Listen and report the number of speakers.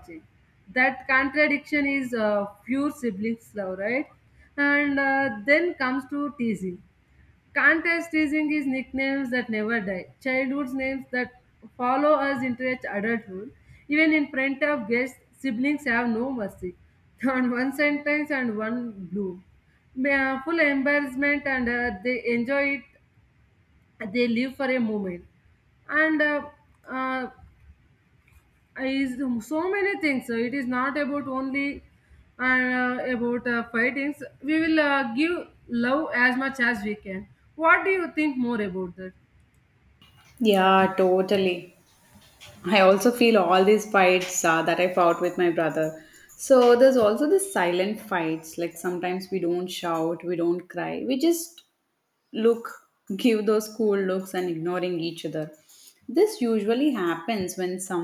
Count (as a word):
two